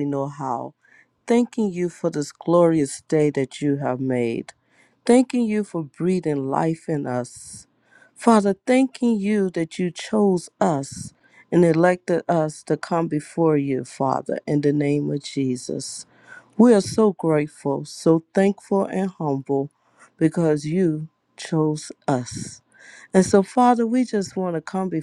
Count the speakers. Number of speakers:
1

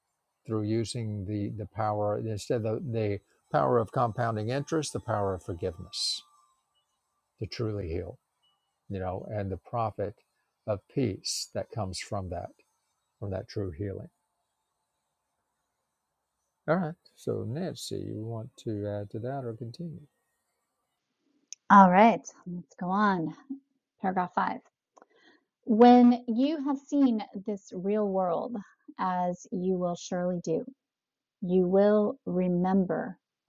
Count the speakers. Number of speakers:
2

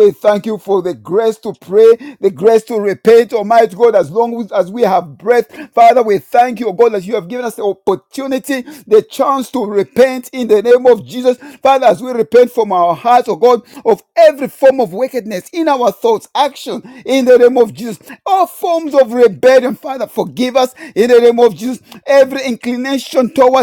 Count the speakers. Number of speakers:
1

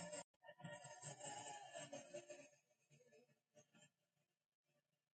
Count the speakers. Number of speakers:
0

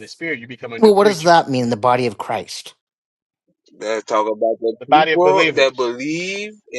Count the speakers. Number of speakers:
3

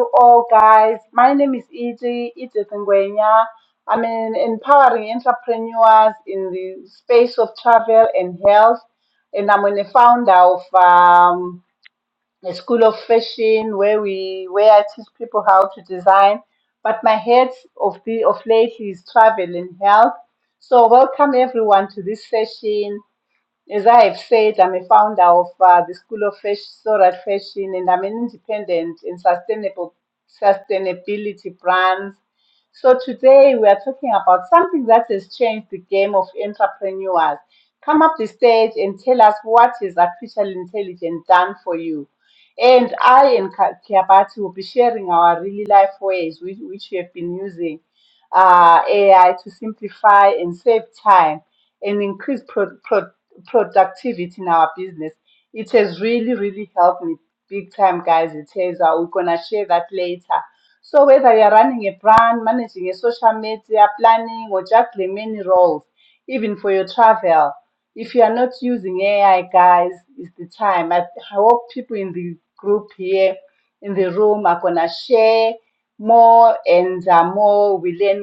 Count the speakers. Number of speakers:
1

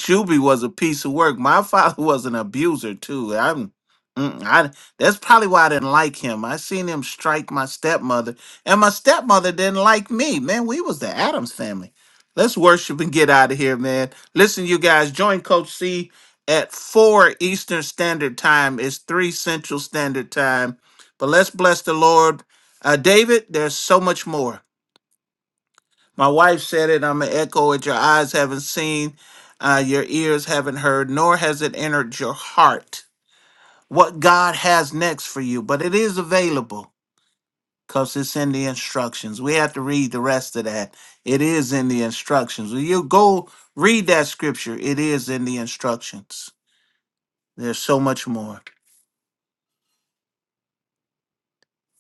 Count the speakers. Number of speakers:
1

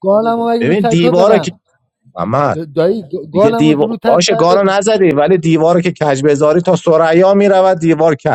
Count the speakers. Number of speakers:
2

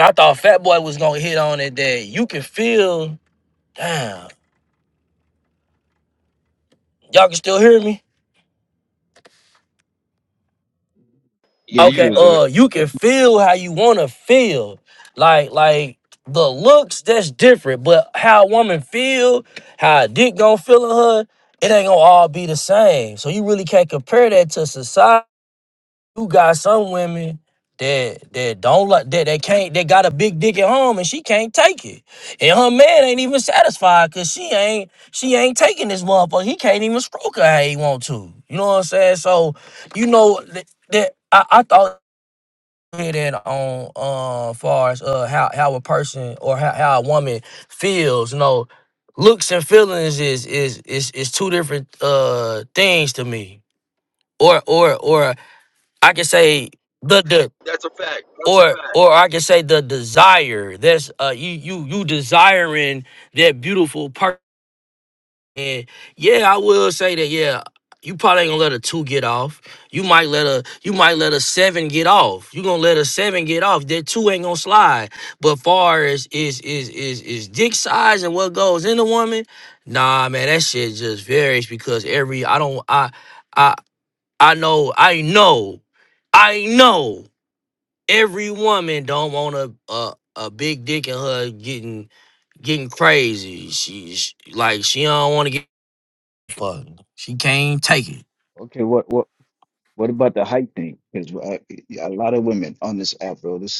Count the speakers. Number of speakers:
3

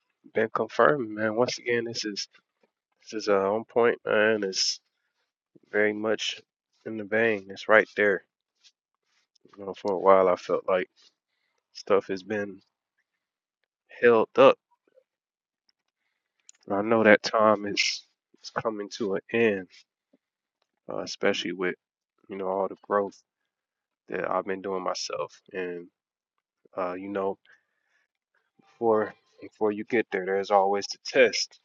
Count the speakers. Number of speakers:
1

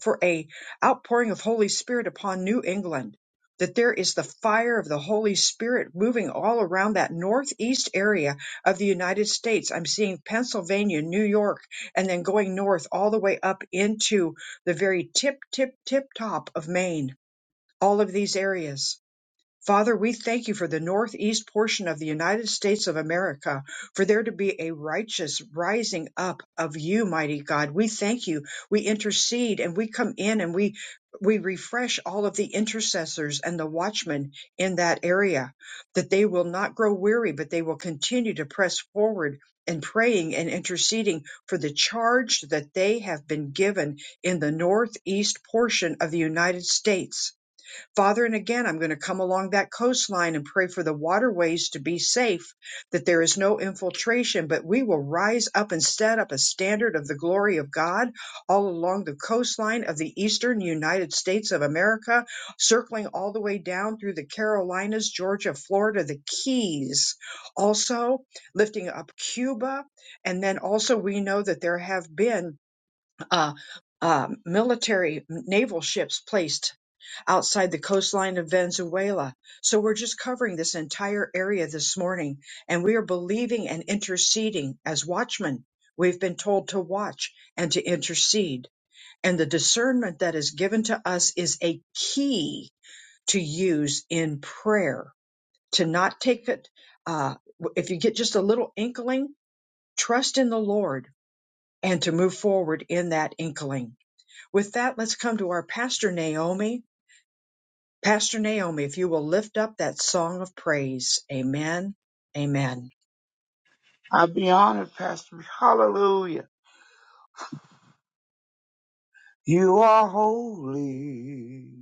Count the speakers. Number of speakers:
2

